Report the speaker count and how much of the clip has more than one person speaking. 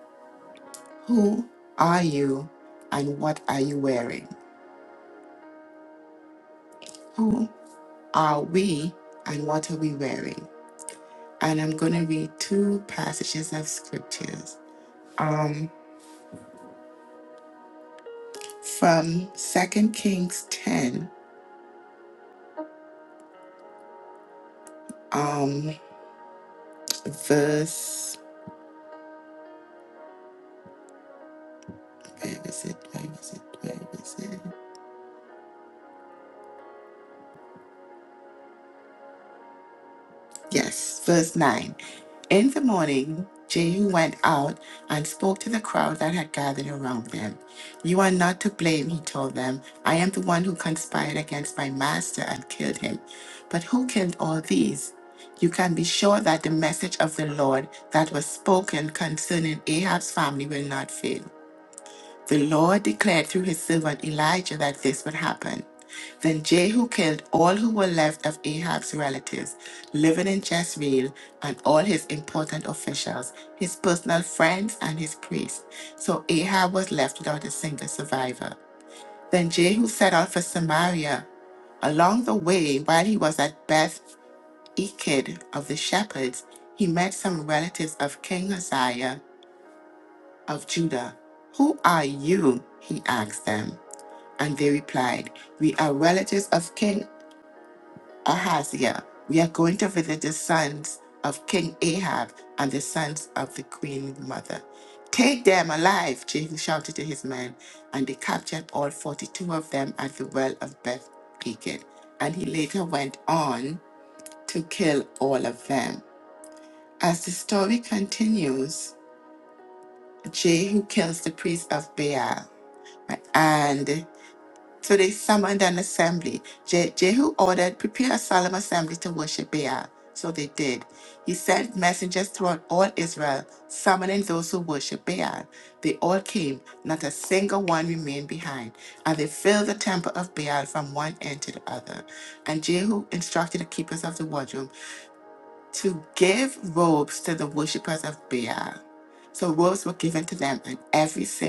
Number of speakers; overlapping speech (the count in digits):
1, no overlap